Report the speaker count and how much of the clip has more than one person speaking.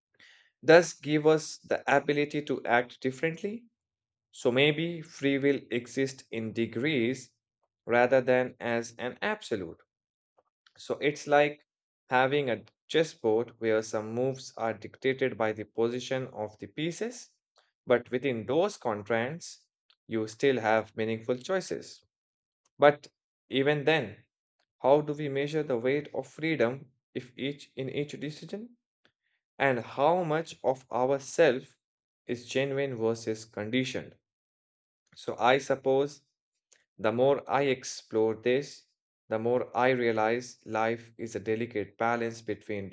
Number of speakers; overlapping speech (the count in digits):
1, no overlap